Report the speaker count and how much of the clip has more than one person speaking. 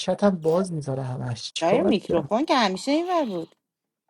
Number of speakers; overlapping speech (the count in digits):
2, about 16%